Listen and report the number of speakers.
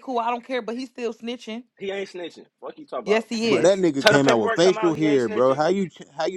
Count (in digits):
3